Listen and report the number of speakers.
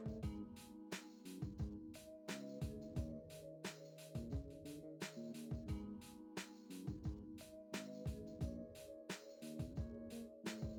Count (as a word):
zero